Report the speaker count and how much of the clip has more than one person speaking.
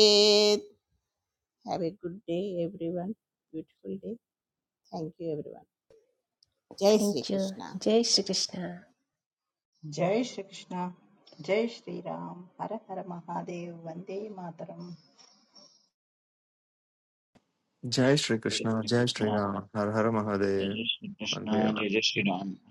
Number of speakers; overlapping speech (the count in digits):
5, about 11%